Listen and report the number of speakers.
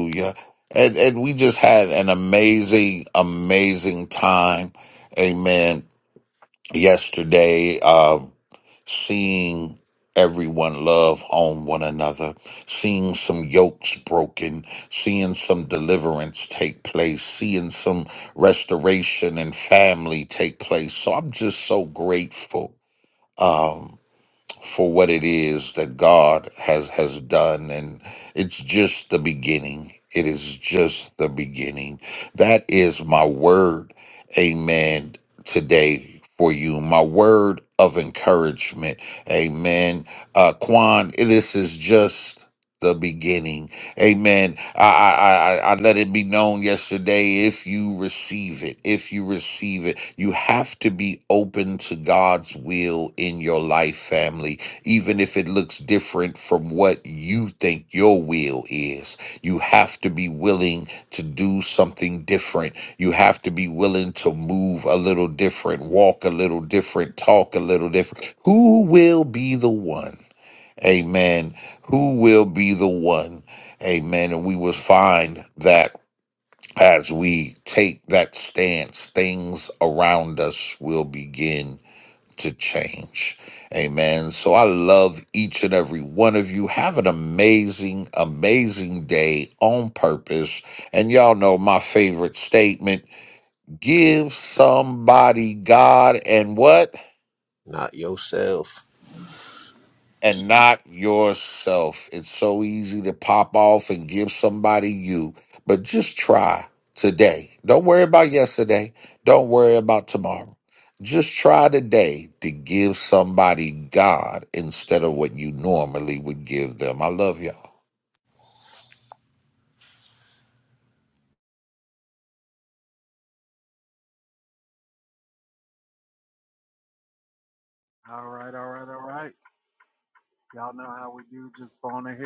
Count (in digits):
3